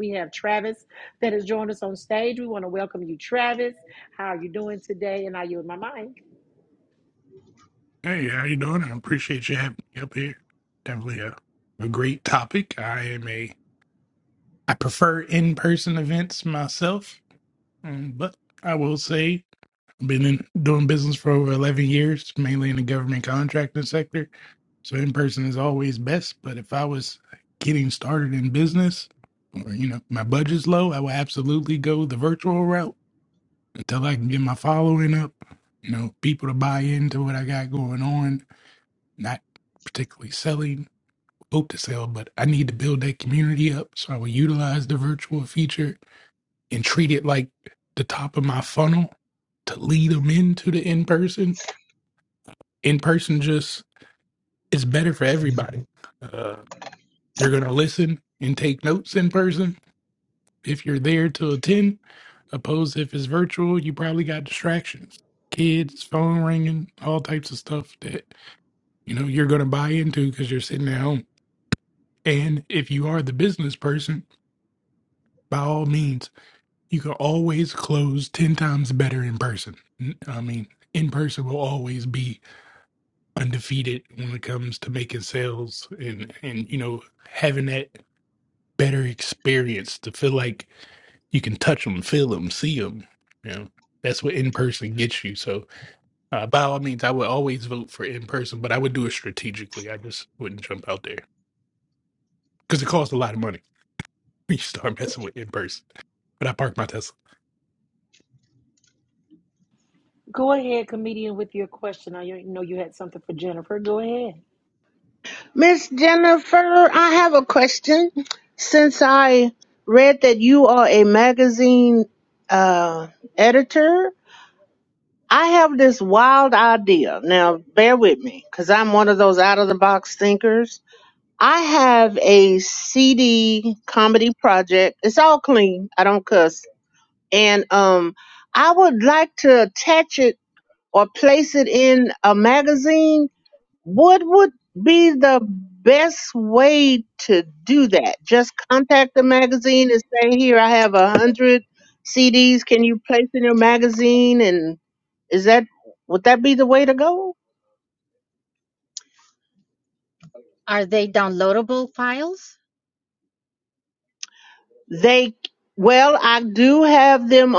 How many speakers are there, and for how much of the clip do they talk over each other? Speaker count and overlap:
4, no overlap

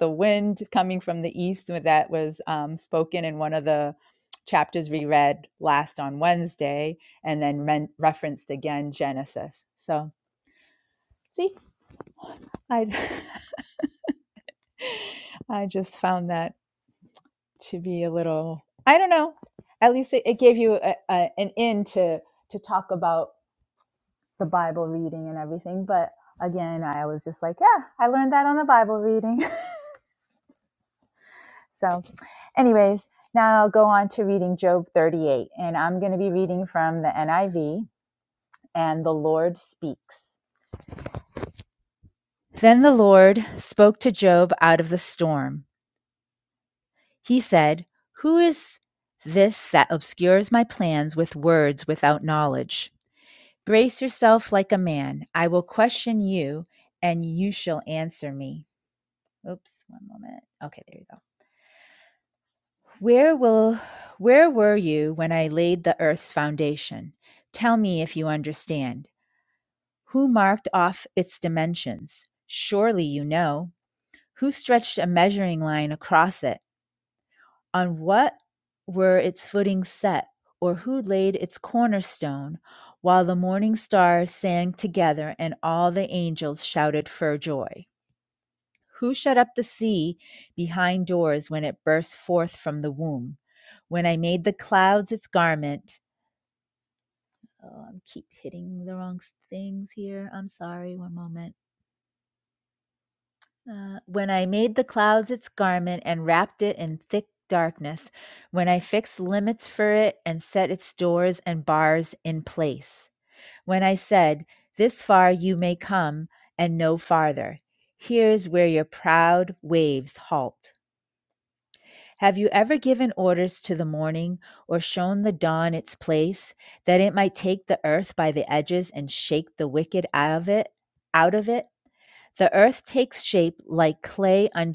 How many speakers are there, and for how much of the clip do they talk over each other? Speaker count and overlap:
1, no overlap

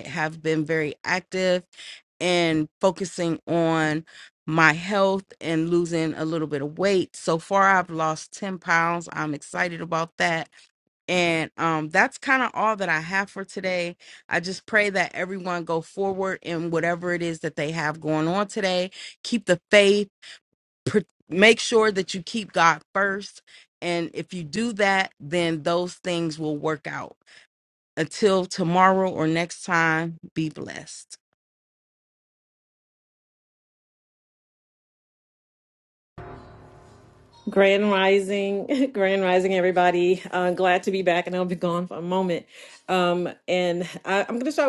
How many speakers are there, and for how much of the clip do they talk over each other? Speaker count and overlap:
2, no overlap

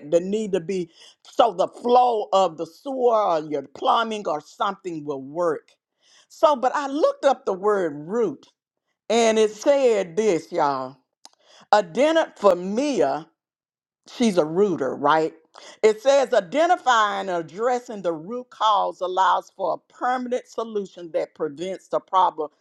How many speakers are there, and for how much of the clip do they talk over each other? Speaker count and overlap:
1, no overlap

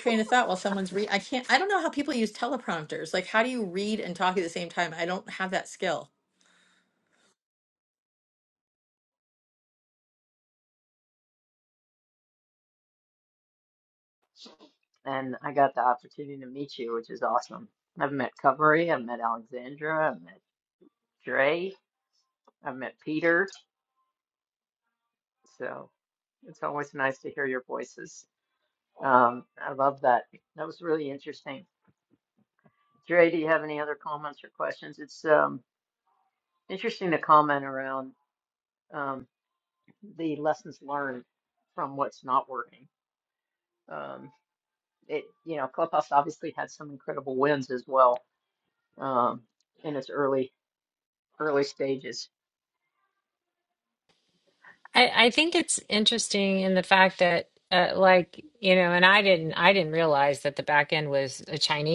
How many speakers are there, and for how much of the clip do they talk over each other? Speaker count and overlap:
3, no overlap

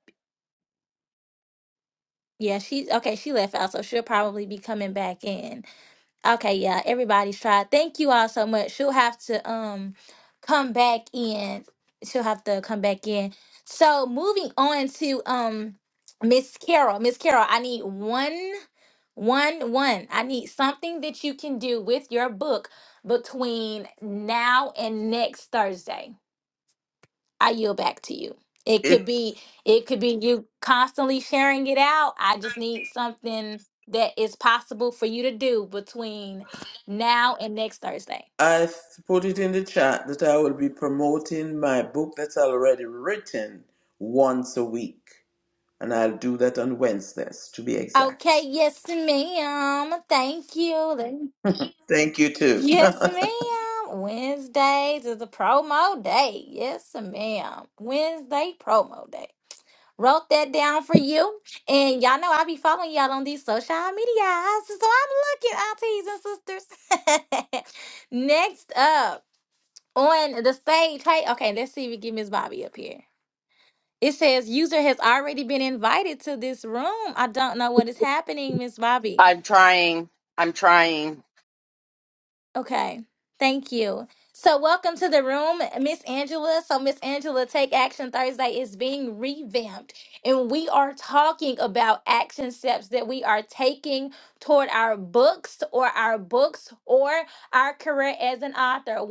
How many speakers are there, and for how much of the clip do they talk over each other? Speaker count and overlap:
3, about 1%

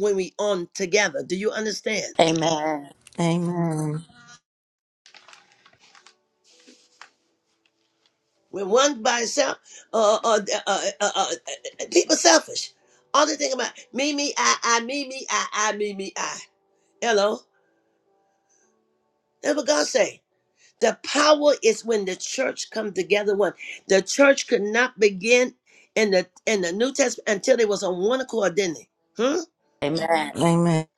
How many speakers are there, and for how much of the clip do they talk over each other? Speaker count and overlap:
3, under 1%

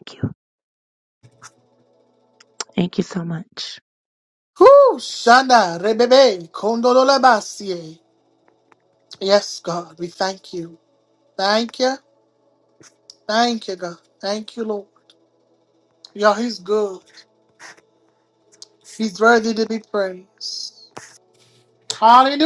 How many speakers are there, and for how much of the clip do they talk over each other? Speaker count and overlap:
2, no overlap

